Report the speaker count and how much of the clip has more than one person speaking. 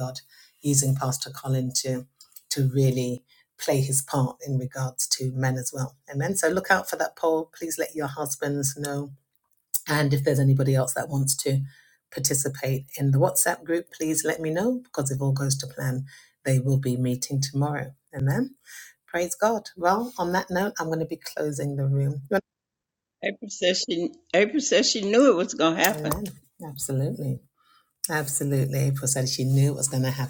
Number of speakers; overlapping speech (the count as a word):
two, about 1%